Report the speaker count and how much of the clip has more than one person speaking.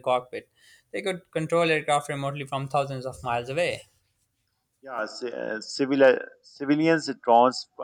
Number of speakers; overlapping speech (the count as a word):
two, no overlap